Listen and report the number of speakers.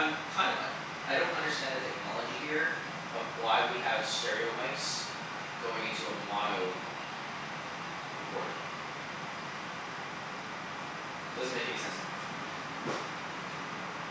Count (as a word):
one